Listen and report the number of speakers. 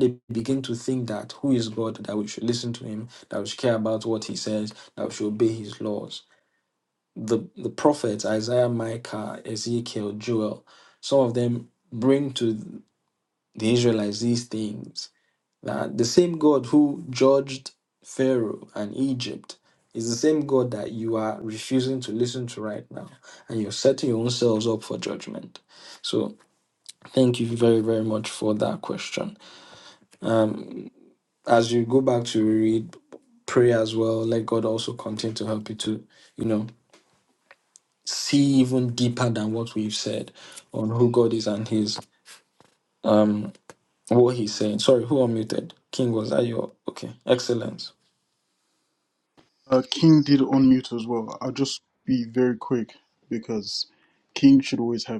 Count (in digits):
2